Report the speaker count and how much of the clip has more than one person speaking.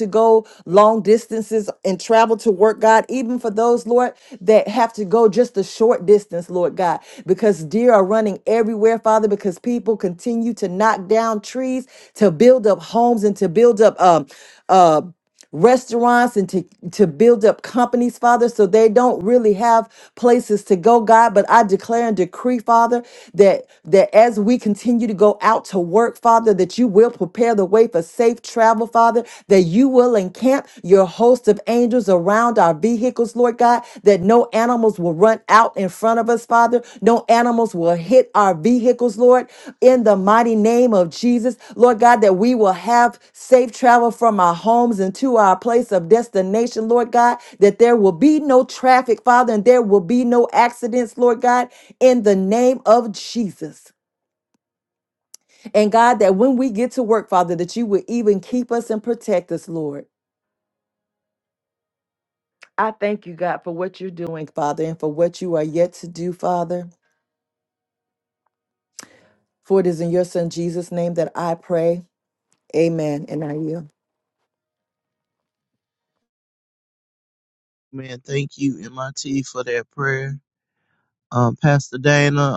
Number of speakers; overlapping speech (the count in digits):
2, no overlap